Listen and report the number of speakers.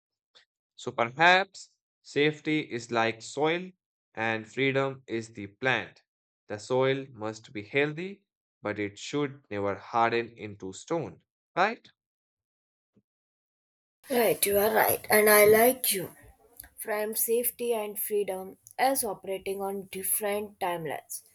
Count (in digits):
2